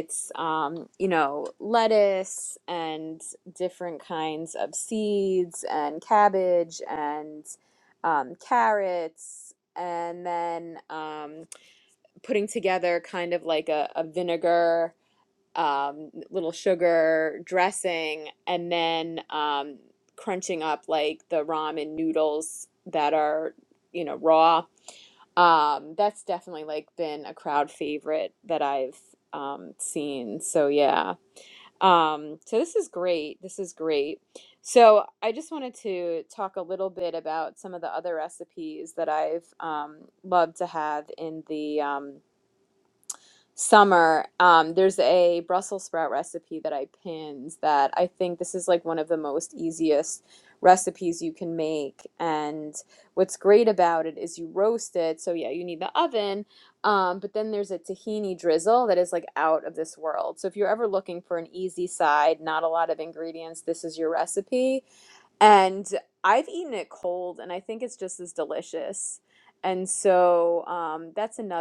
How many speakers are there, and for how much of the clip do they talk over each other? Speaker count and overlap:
one, no overlap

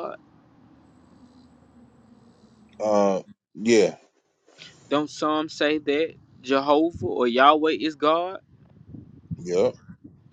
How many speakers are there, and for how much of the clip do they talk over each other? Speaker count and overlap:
two, no overlap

